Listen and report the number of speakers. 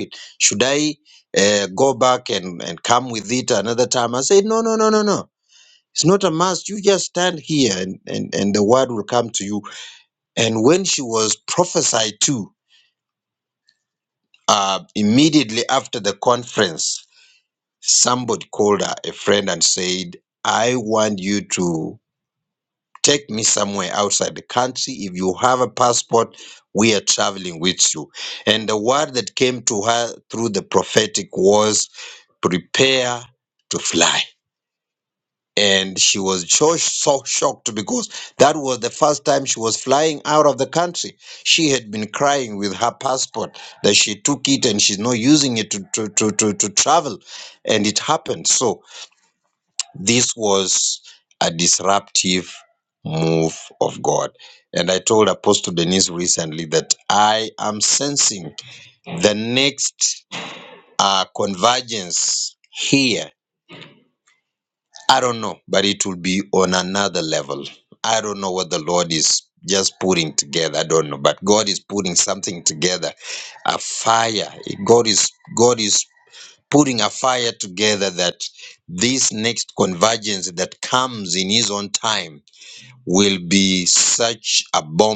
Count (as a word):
one